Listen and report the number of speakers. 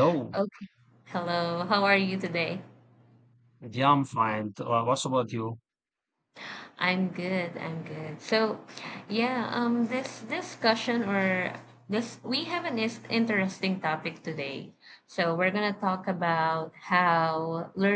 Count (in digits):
2